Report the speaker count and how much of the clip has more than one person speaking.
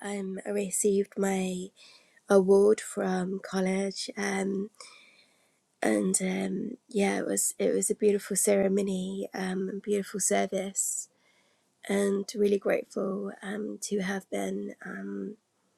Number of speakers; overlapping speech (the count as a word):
one, no overlap